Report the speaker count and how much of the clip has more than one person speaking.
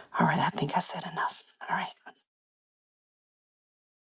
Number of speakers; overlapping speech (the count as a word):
one, no overlap